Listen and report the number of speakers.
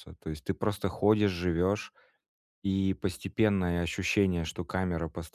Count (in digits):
1